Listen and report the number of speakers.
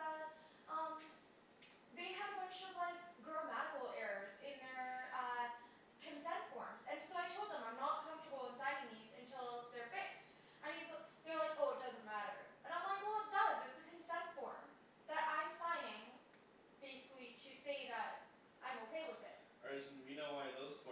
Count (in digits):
2